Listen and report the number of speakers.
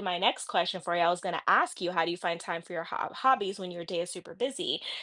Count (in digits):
1